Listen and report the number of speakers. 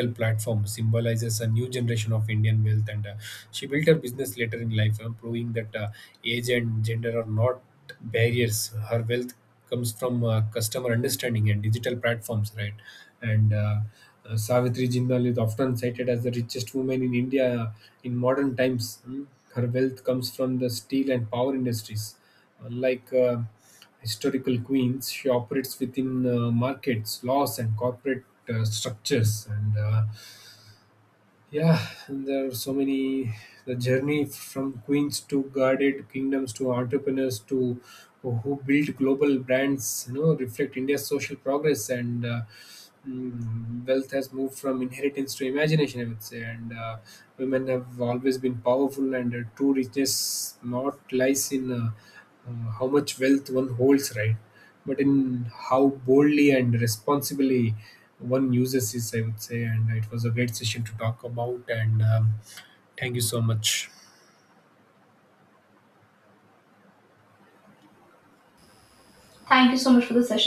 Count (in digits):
2